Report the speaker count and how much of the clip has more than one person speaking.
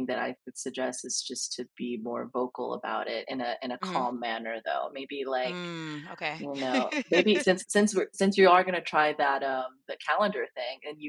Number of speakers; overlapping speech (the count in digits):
2, about 4%